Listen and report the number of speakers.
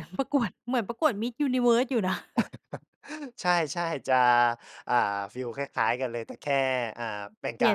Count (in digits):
2